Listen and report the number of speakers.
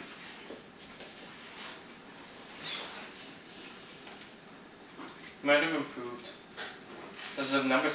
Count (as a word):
one